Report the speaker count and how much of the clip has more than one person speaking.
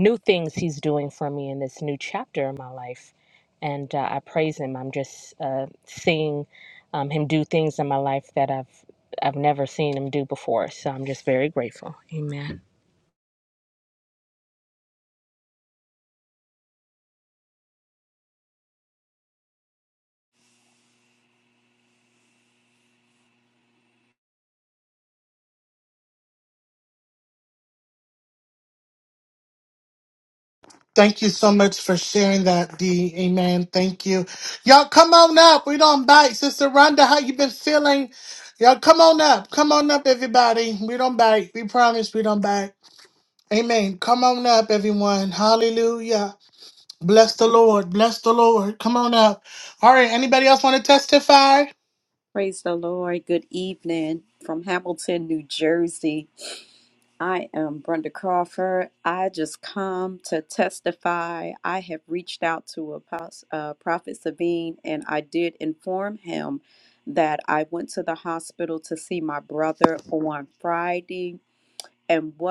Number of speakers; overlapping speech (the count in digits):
3, no overlap